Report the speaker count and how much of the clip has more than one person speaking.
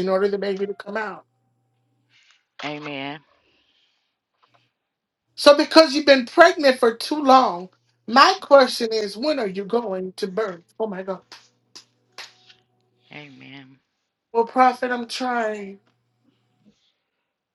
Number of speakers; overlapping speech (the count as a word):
two, no overlap